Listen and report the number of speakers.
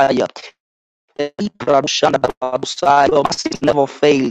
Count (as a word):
one